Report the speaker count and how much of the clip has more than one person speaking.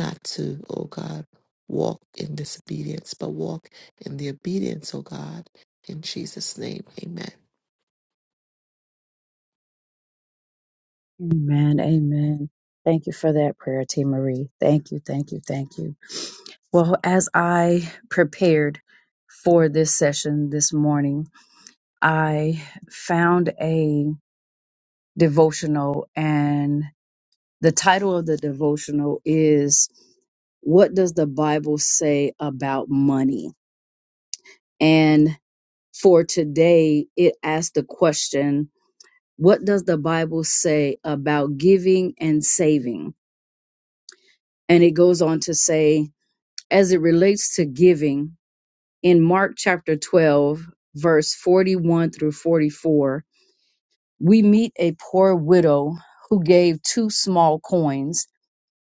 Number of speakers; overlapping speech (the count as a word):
two, no overlap